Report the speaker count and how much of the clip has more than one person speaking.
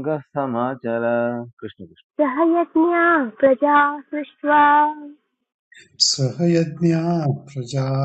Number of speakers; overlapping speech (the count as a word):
three, no overlap